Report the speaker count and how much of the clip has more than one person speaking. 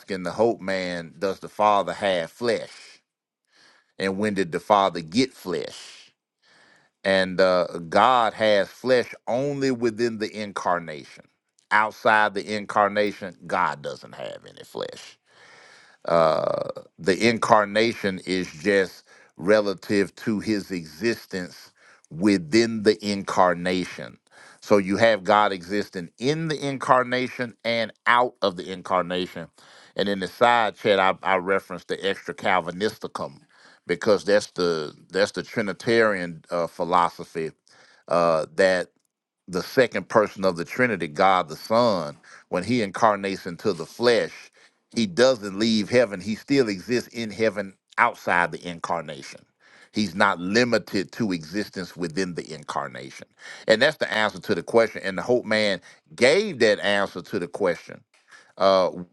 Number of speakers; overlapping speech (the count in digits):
1, no overlap